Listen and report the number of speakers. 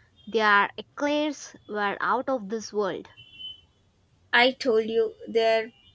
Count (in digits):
2